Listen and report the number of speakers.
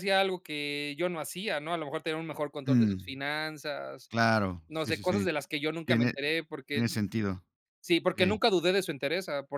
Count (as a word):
two